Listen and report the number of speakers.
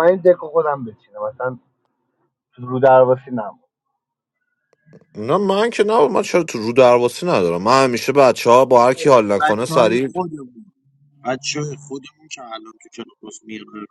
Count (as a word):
three